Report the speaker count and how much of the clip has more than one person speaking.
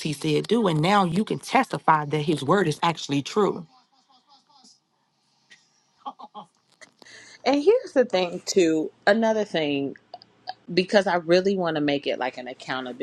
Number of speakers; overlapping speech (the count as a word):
two, no overlap